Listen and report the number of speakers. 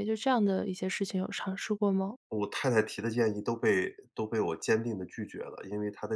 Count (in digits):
2